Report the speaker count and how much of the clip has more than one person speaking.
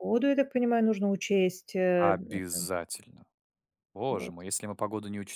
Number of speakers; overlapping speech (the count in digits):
2, about 5%